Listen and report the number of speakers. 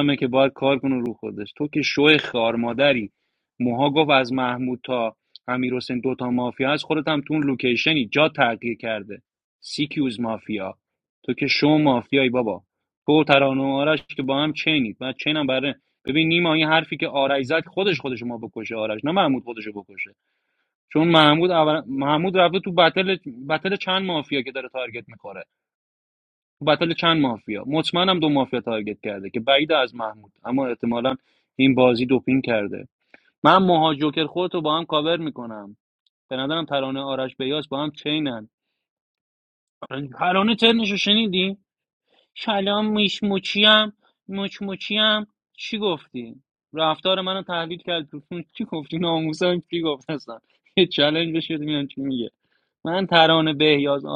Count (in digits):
1